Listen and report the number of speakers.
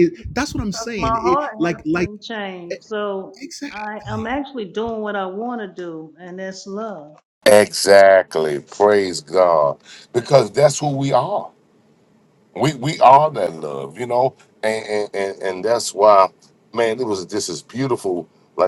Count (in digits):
3